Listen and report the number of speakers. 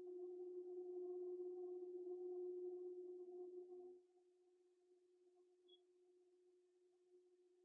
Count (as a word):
zero